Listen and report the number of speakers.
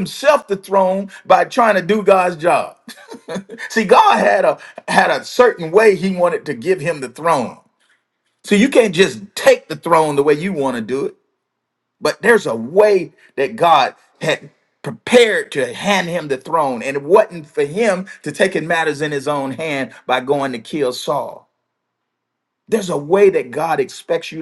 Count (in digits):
1